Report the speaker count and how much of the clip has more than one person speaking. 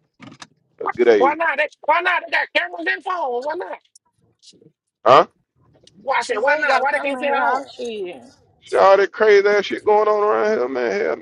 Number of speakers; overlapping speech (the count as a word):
three, about 17%